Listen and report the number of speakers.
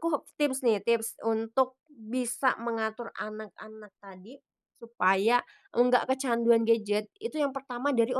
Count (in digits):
1